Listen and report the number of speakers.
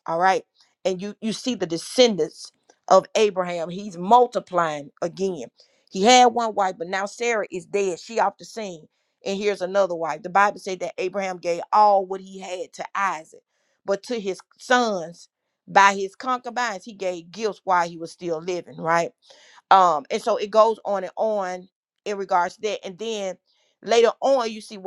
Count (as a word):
one